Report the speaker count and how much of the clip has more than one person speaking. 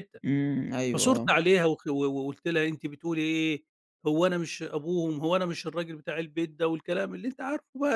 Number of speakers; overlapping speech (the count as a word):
two, about 5%